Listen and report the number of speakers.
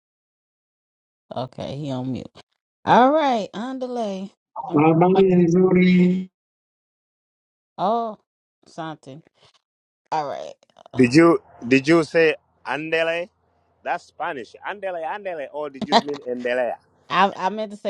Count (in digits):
3